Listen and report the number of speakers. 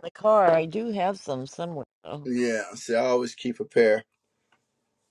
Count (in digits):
2